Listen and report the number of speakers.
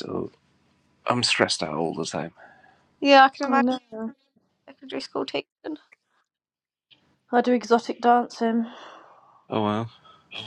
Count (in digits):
3